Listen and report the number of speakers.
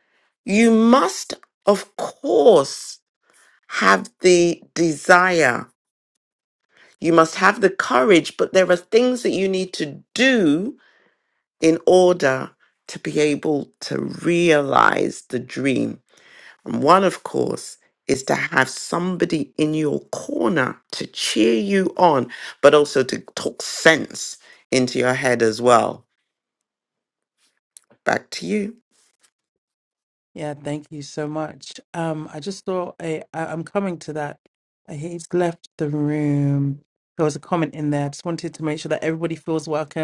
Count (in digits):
2